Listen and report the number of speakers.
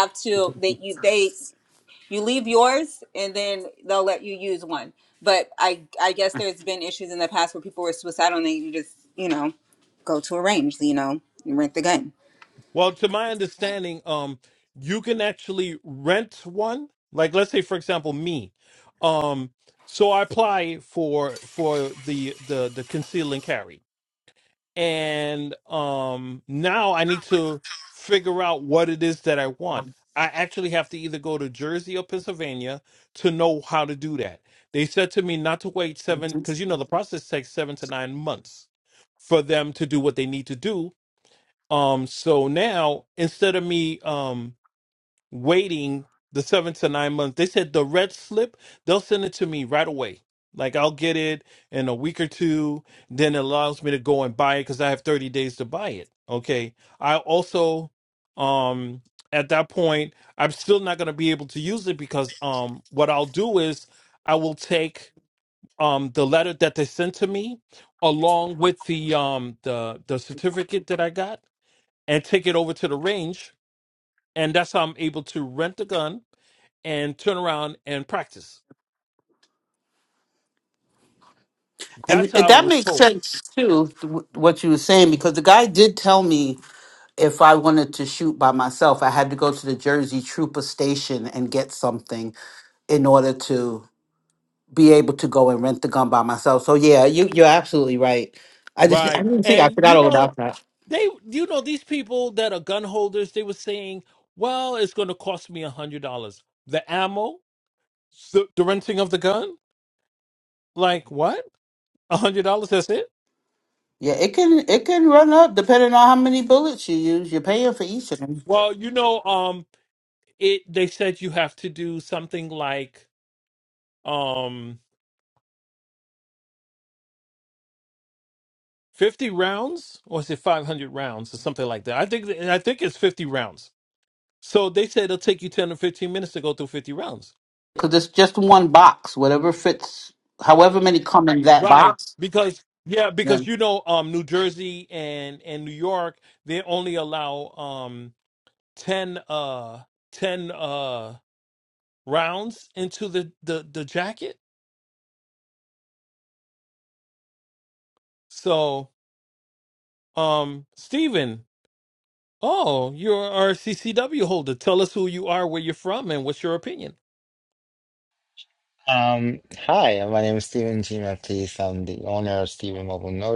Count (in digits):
4